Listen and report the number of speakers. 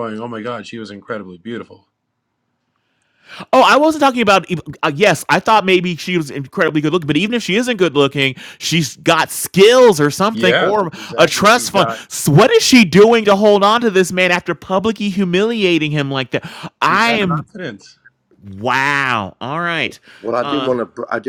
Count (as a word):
three